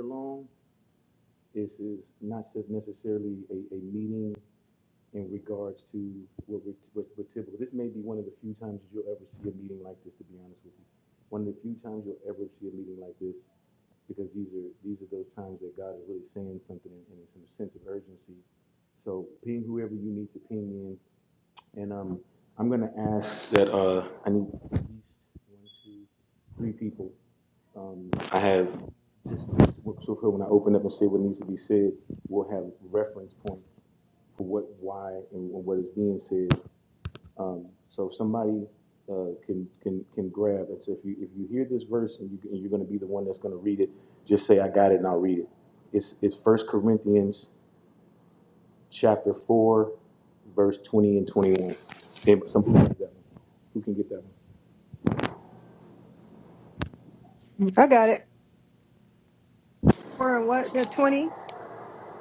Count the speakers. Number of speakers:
2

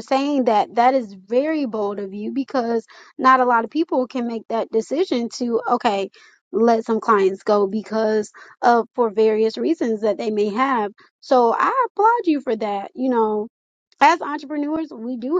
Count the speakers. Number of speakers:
1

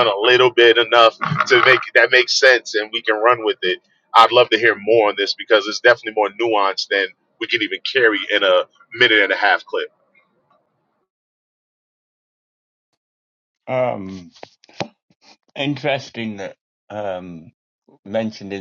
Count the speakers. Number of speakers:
2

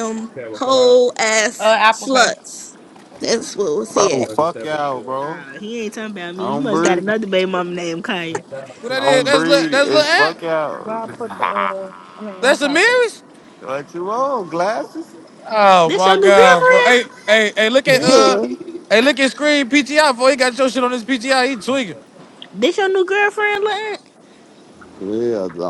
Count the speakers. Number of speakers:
5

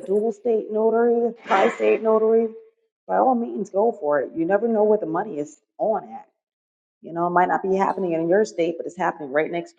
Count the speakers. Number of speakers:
1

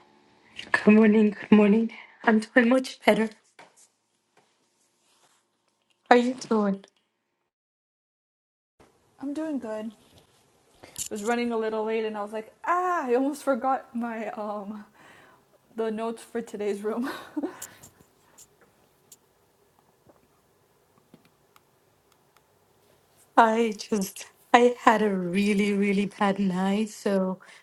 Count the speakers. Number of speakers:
2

